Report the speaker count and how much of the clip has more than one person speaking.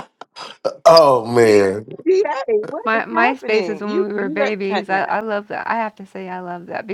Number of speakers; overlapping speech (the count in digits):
3, about 28%